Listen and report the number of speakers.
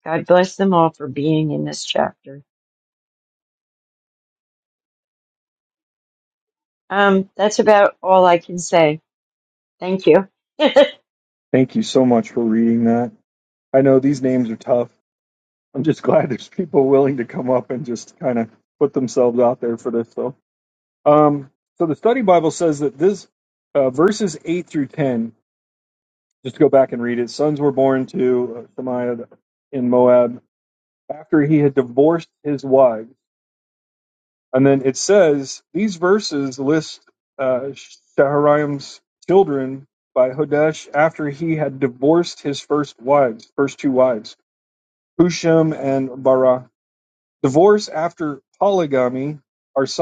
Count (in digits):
2